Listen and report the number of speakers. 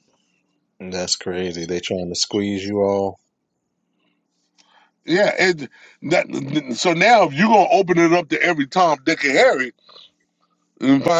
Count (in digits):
2